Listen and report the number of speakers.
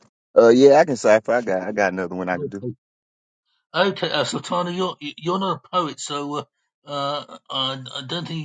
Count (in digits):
2